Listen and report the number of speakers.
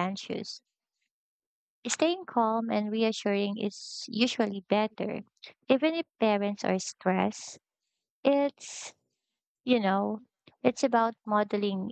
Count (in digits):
1